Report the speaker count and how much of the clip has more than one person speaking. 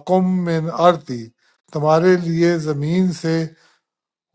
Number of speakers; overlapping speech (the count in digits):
1, no overlap